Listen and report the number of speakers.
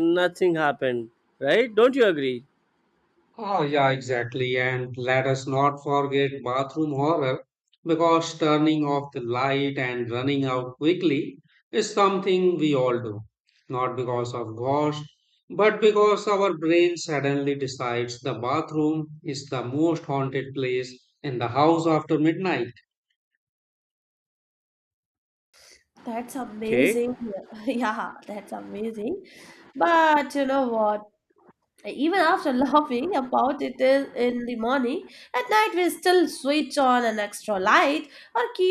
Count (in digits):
3